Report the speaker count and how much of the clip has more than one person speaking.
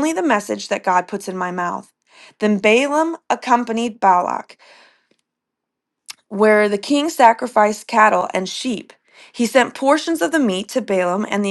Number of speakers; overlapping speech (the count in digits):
1, no overlap